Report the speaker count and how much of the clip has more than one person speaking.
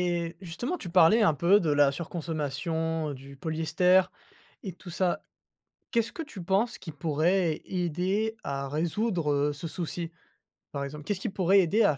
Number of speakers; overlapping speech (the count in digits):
1, no overlap